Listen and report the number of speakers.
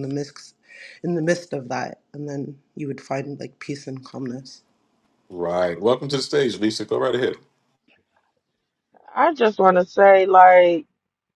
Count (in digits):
3